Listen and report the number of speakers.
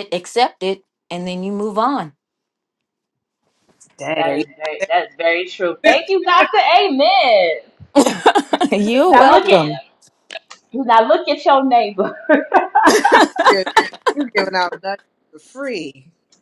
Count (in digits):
3